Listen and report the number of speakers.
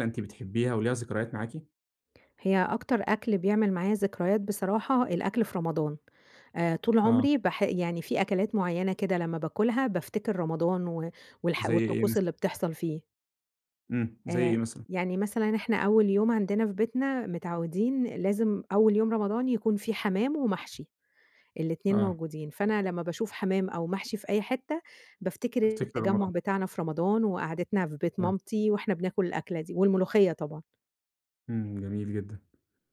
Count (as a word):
two